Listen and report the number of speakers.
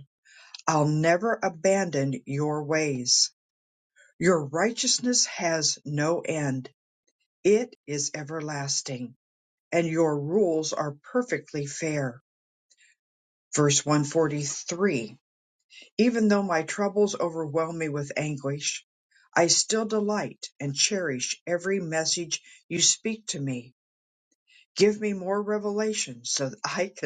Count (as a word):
one